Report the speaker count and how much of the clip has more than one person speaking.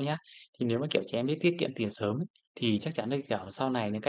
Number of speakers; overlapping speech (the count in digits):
1, no overlap